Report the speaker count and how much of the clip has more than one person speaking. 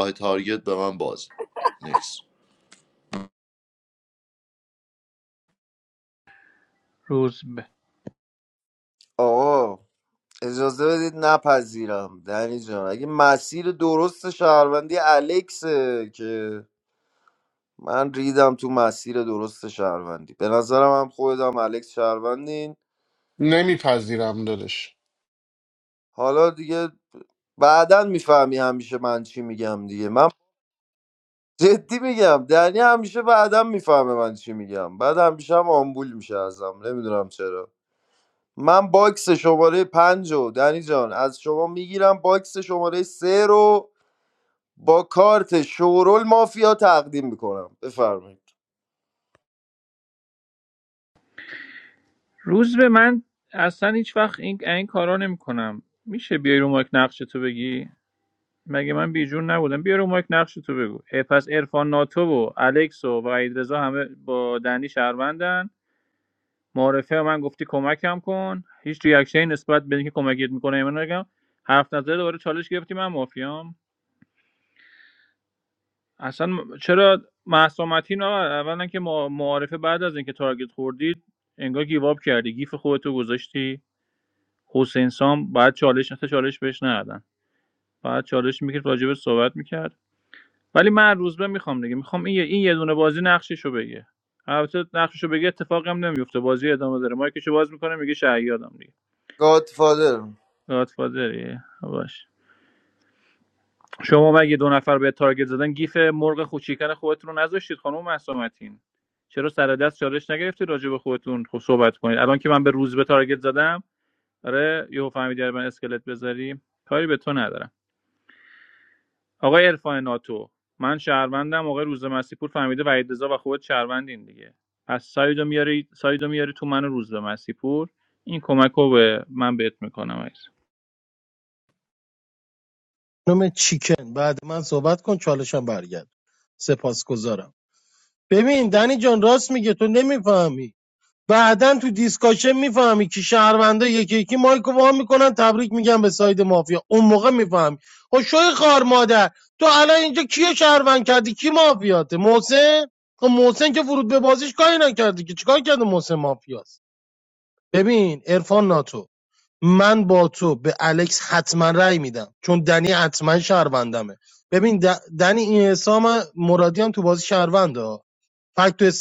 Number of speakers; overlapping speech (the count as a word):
five, no overlap